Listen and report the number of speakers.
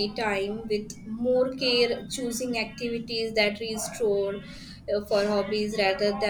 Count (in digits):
1